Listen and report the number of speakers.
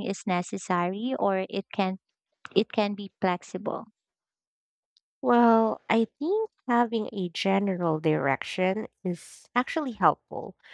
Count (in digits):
2